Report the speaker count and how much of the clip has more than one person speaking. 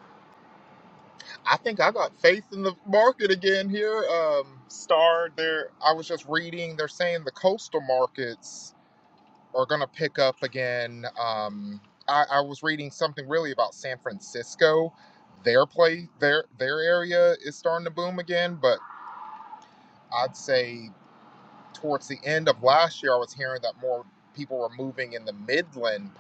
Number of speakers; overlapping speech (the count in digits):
1, no overlap